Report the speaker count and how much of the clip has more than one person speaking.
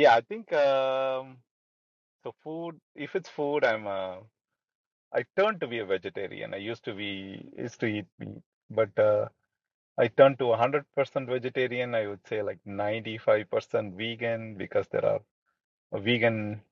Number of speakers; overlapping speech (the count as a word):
one, no overlap